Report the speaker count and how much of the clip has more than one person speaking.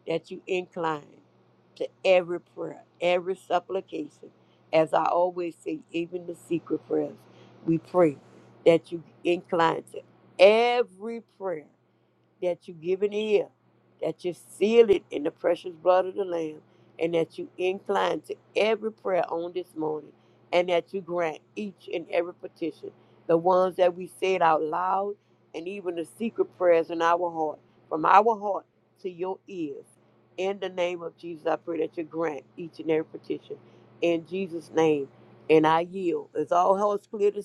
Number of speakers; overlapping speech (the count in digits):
1, no overlap